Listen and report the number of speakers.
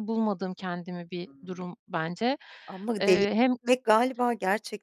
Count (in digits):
2